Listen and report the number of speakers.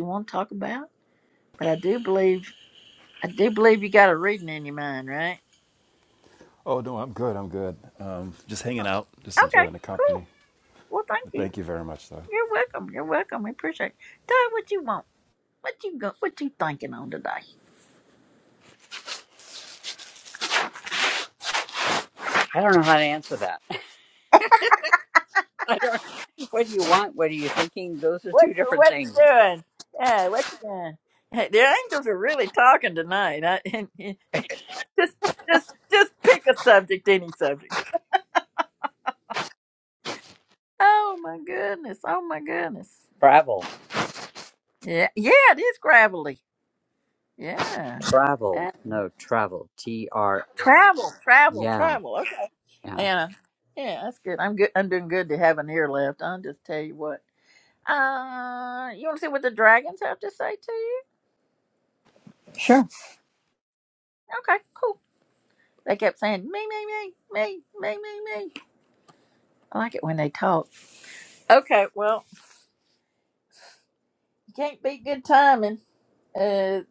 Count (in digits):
3